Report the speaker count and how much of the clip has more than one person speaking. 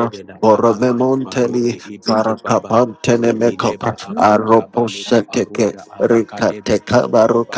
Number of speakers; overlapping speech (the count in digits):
2, about 69%